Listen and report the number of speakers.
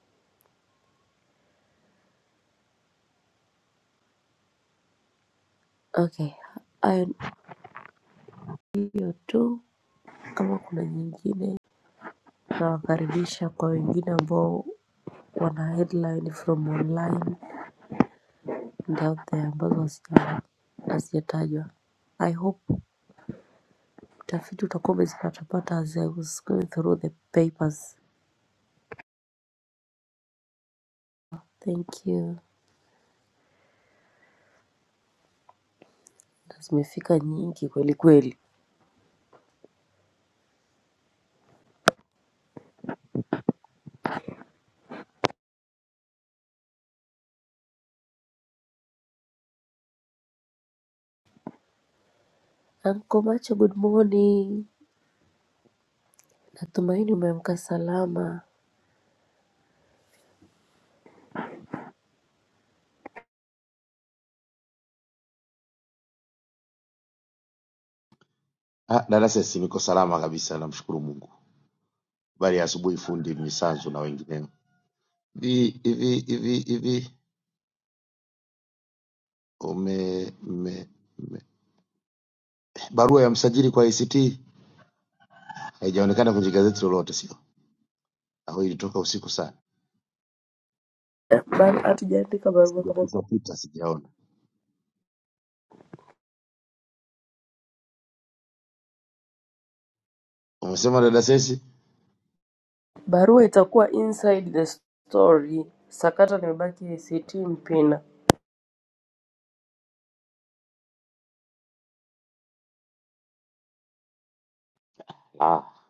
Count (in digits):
2